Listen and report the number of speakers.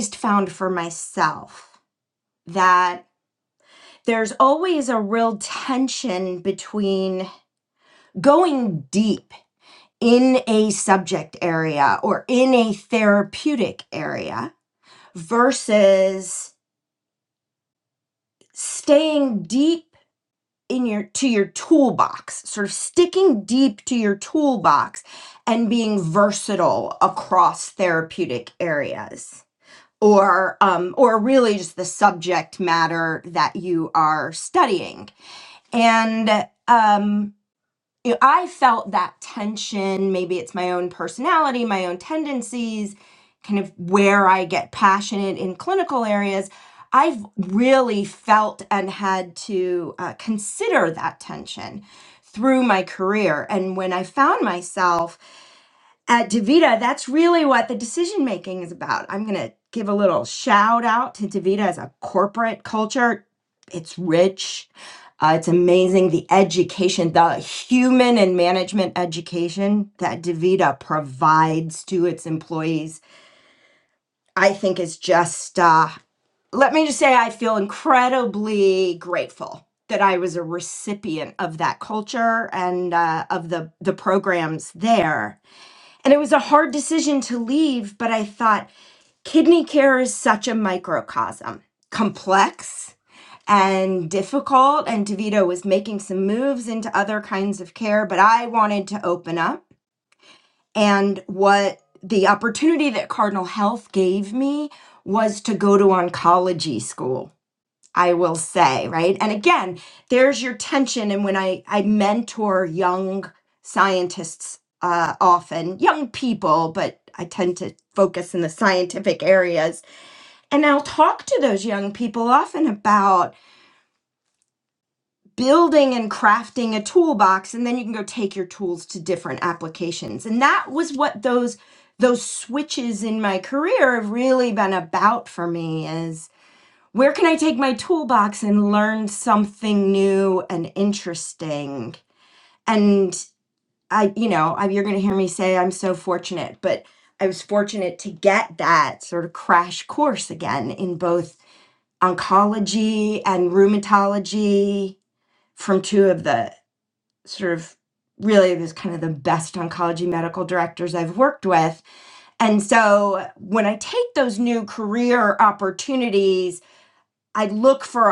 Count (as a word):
one